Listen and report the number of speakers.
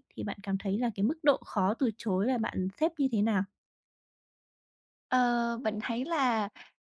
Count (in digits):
2